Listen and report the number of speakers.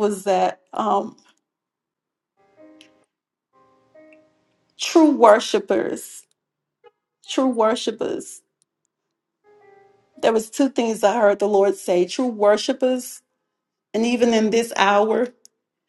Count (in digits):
1